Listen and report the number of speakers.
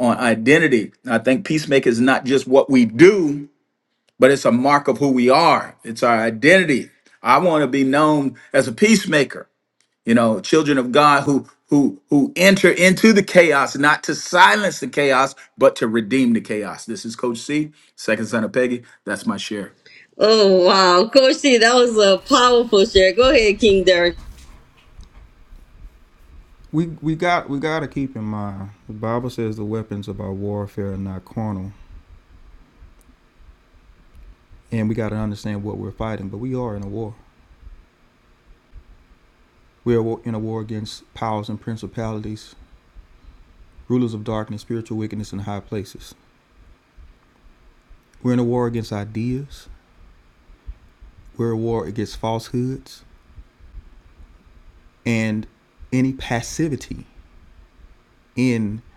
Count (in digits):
3